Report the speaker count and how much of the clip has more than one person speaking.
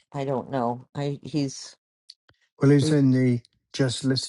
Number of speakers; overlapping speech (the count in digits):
2, no overlap